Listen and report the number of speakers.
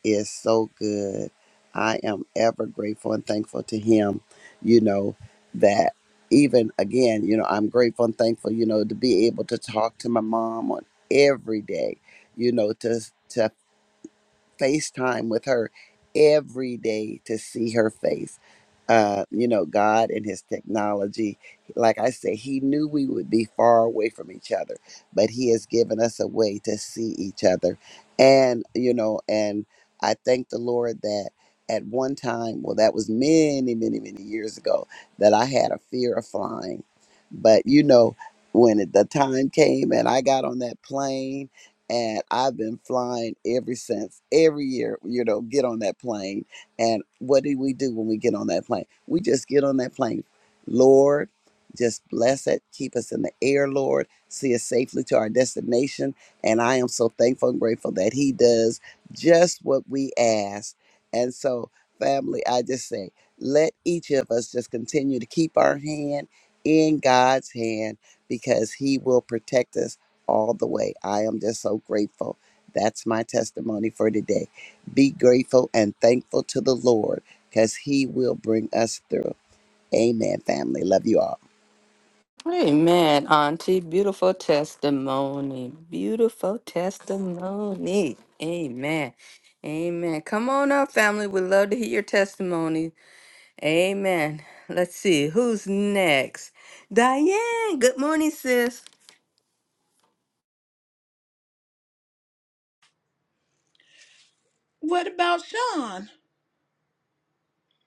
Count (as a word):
three